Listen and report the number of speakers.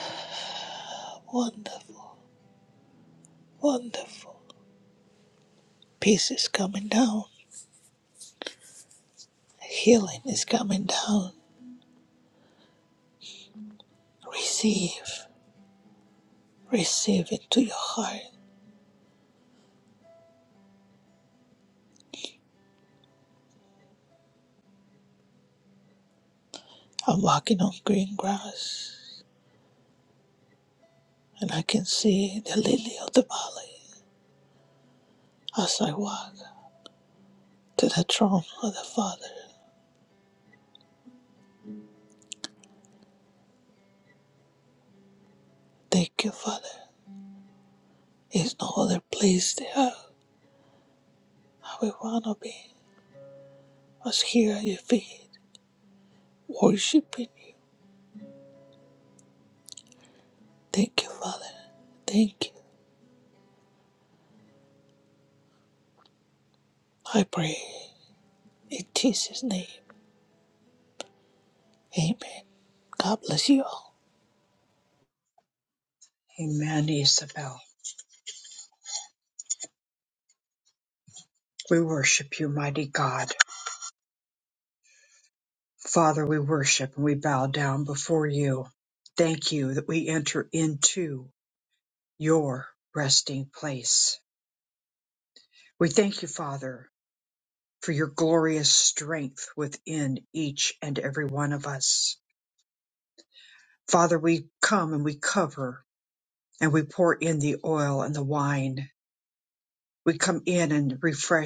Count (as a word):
two